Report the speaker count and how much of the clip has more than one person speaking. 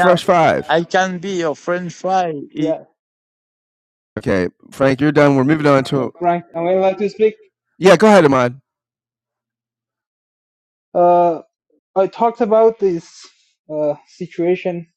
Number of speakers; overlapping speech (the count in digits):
3, about 4%